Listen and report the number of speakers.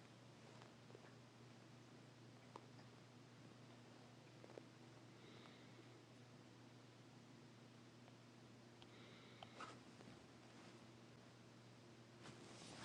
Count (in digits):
0